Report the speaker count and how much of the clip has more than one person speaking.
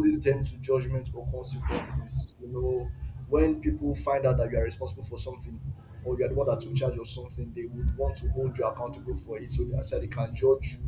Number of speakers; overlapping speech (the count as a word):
one, no overlap